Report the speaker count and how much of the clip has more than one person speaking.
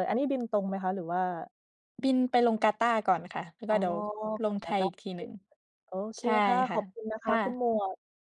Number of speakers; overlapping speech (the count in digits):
2, about 11%